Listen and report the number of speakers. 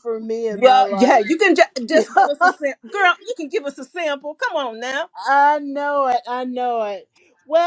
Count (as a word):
two